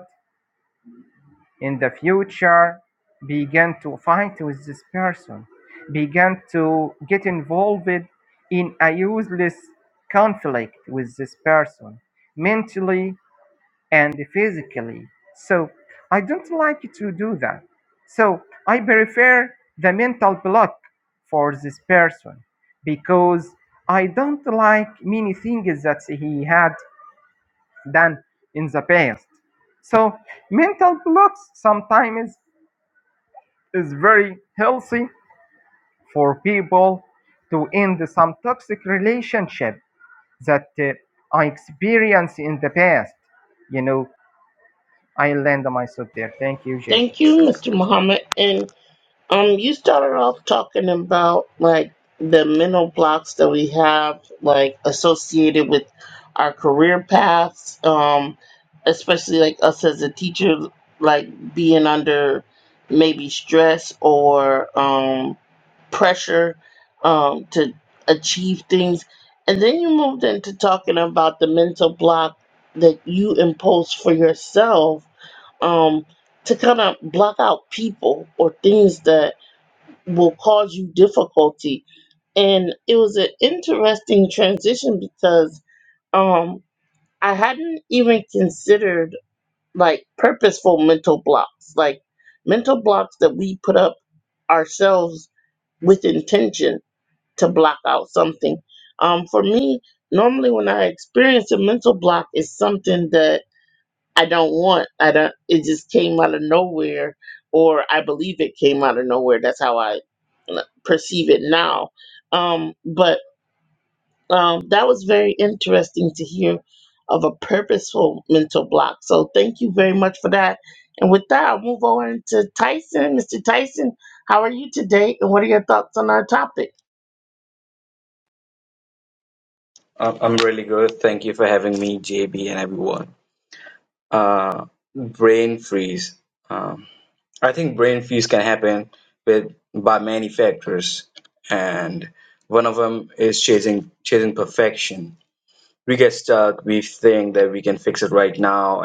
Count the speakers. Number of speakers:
3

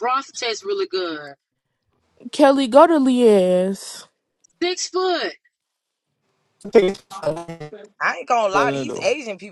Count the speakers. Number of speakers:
4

